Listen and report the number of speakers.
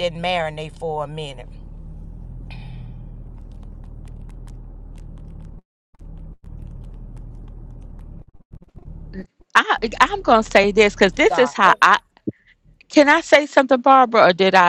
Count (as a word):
two